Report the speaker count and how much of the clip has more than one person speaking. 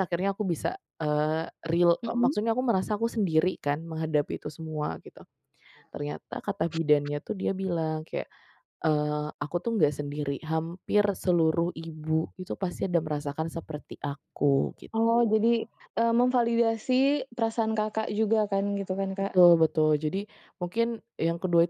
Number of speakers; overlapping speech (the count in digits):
2, about 2%